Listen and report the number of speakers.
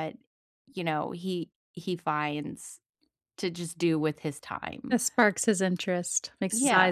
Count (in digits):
2